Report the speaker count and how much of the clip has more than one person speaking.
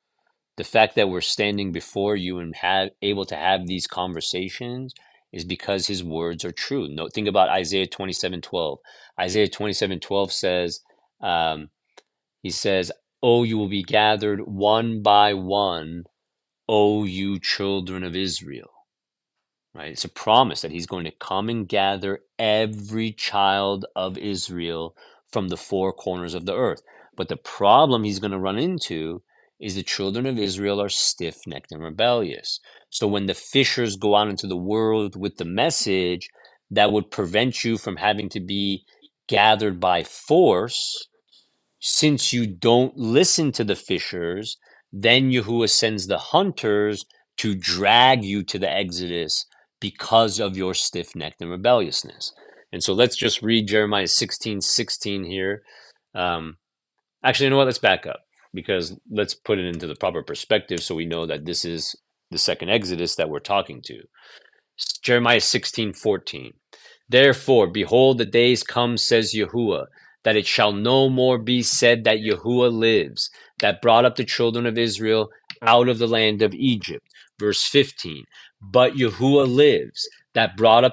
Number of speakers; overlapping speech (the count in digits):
1, no overlap